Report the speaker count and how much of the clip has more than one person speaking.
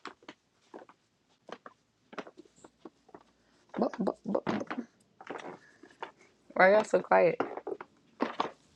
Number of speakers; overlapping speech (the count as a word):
one, no overlap